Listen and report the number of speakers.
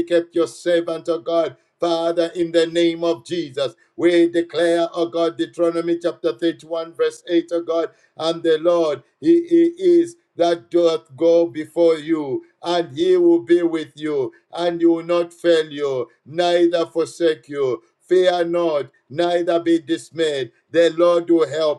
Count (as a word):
one